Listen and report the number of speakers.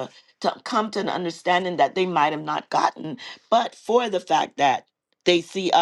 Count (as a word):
one